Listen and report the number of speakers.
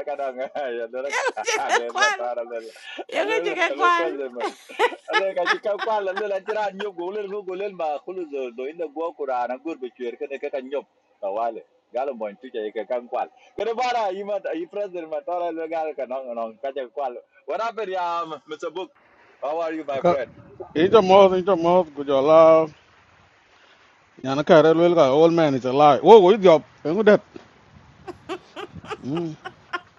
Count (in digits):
3